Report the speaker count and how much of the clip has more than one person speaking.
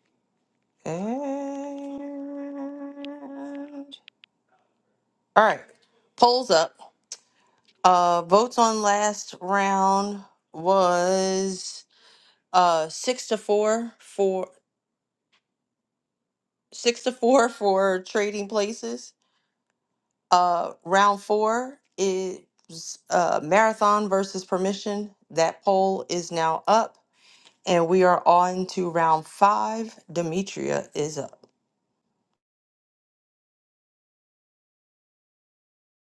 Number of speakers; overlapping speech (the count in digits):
1, no overlap